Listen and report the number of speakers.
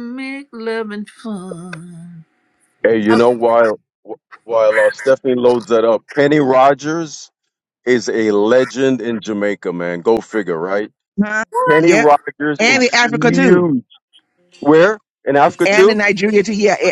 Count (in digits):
3